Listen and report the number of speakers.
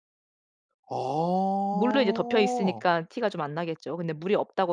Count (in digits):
2